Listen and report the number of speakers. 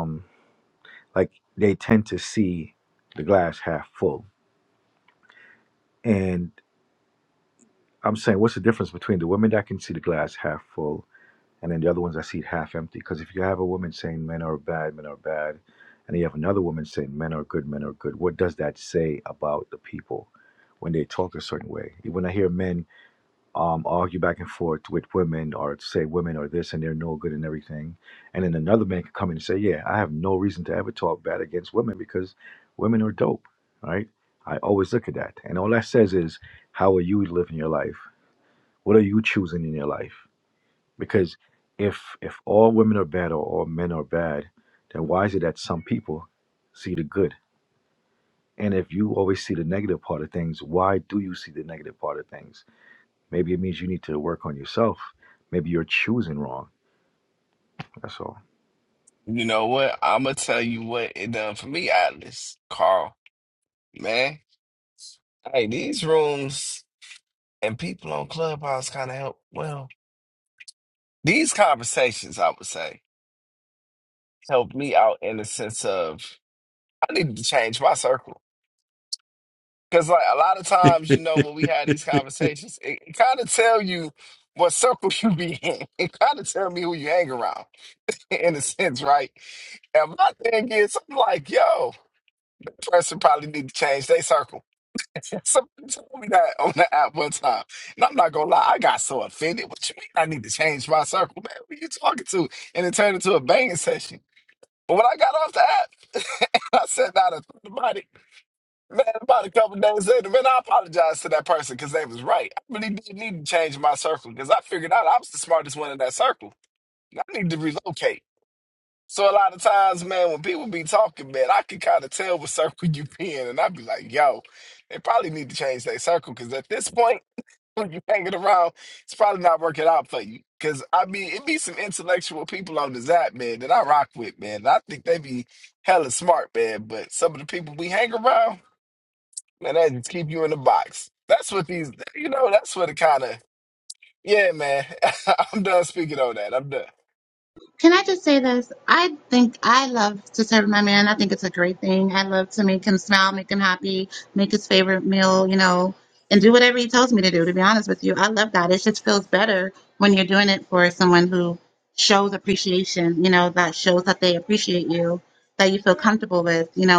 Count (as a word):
three